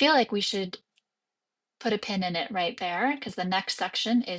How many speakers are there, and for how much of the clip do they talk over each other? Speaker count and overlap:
1, no overlap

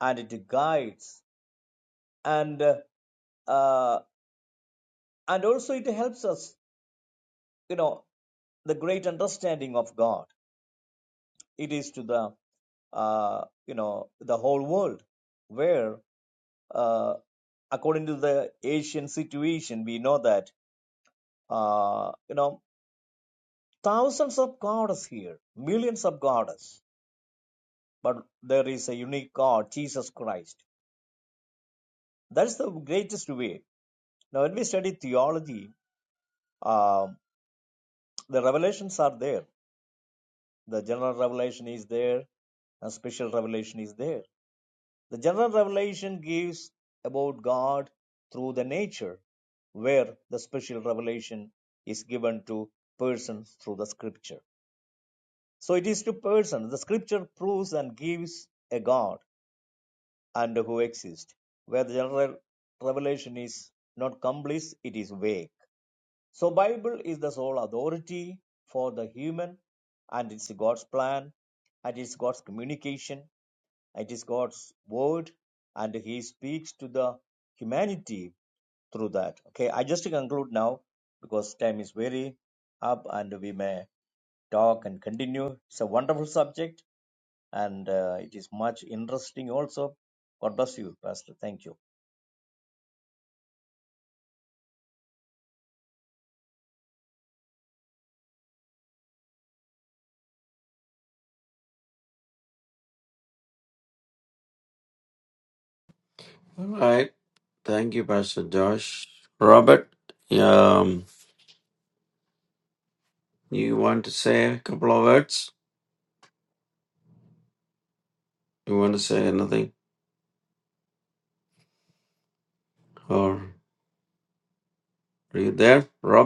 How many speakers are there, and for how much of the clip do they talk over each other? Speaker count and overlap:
2, no overlap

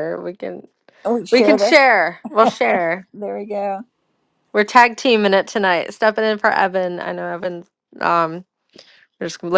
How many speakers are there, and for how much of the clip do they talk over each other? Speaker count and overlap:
2, about 4%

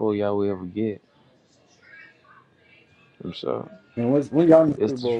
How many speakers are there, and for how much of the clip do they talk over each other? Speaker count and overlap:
2, about 8%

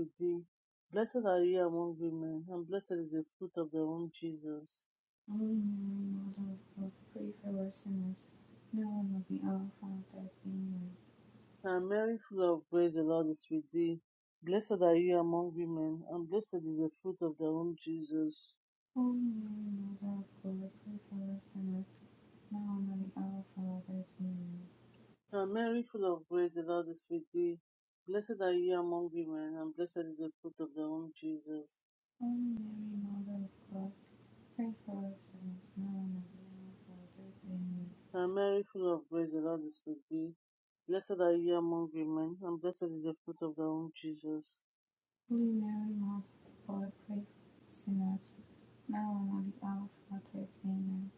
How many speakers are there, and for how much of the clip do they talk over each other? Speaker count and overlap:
2, no overlap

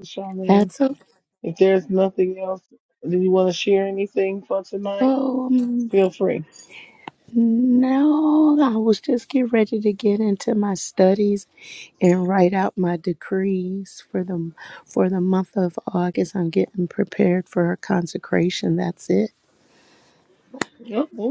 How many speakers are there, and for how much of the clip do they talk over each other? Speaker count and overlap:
2, about 2%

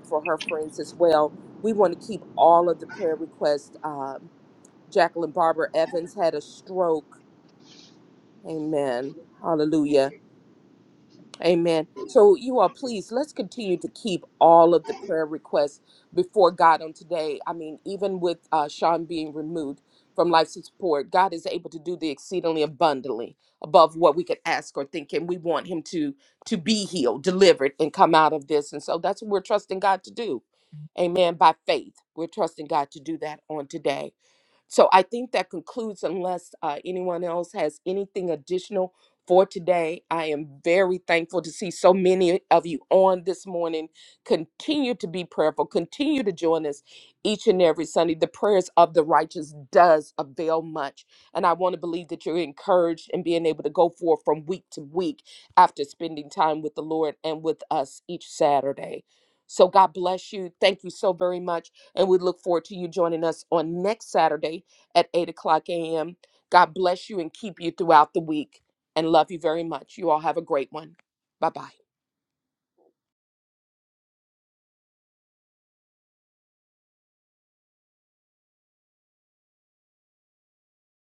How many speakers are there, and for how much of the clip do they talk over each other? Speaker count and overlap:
1, no overlap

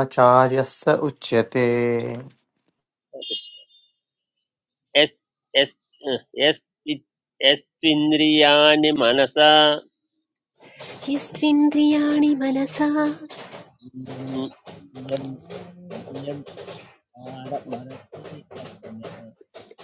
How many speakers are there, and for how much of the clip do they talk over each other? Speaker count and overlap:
3, no overlap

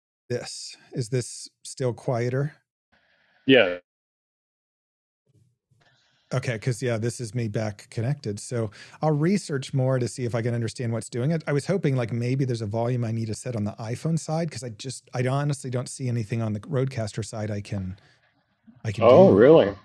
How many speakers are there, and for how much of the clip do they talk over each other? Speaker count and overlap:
2, about 2%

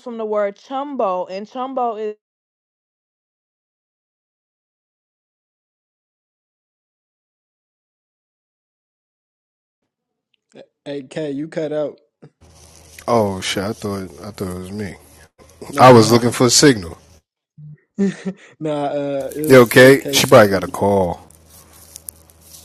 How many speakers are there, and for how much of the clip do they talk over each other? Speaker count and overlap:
3, about 7%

